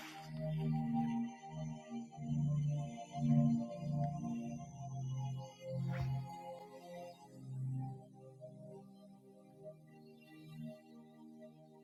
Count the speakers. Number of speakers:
zero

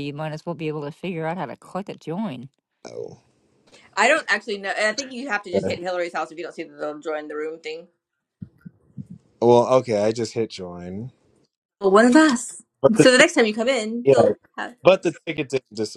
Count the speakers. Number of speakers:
three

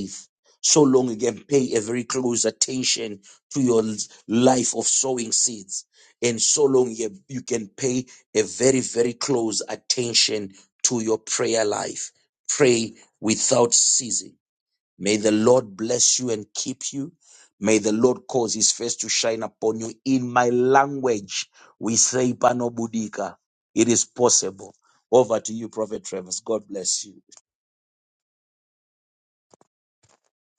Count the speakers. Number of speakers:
one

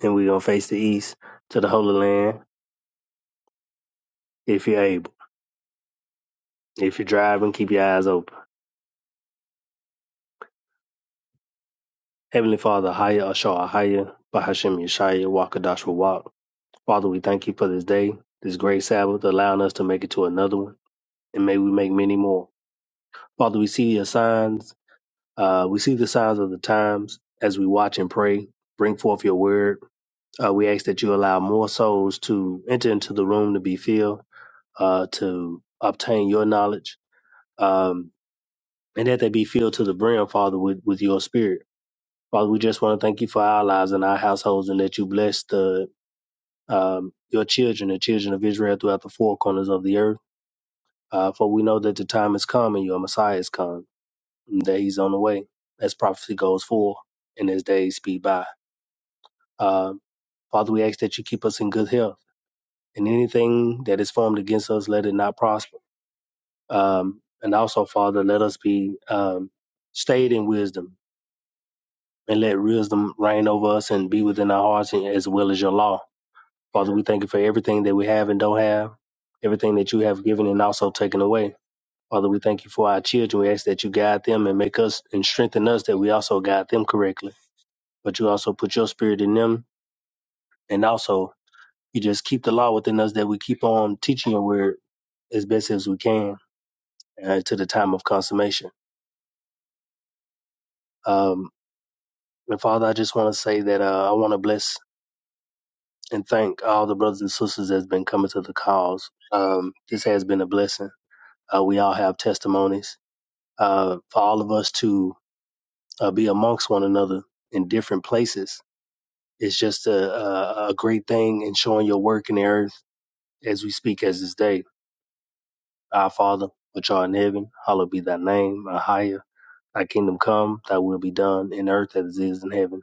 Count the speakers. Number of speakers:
one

